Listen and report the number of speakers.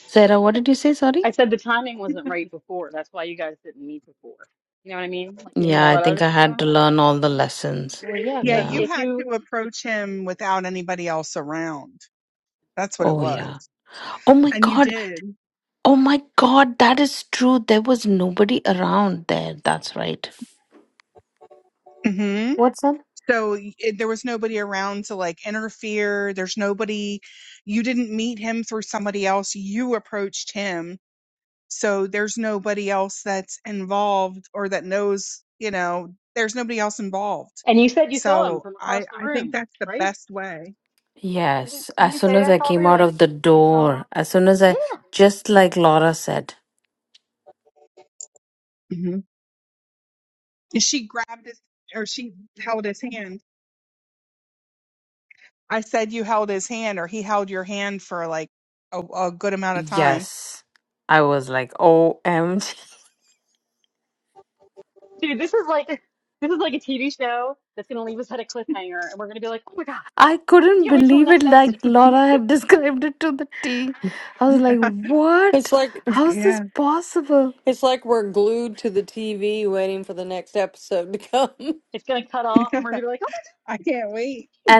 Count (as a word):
four